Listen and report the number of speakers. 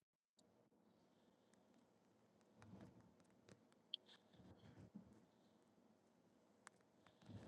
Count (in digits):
0